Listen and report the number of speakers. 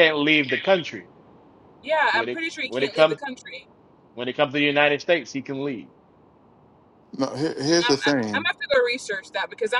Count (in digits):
3